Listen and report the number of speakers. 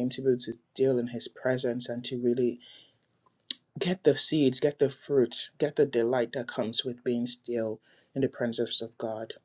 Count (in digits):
1